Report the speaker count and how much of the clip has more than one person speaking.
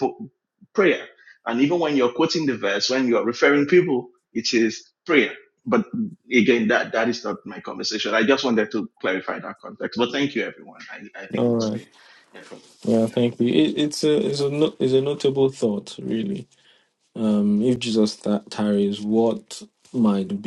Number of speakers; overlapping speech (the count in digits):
2, about 3%